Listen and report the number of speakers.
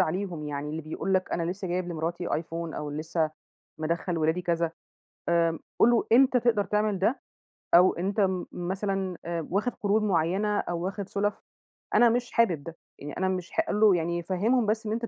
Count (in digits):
1